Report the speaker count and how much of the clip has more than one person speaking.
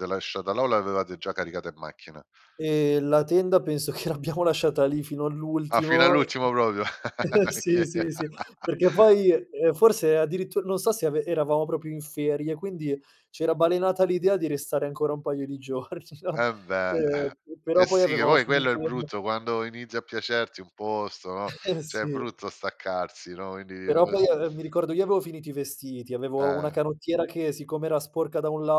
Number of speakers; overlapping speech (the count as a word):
two, about 11%